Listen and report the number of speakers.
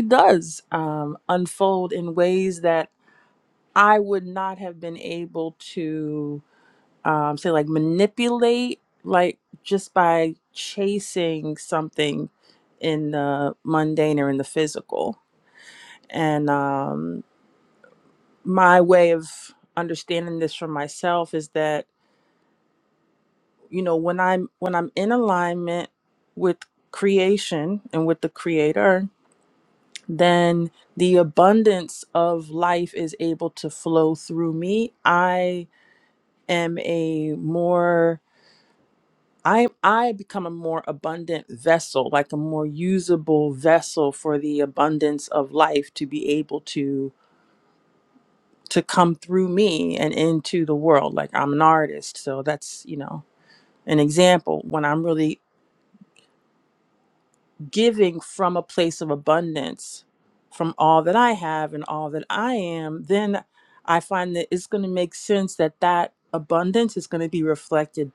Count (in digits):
1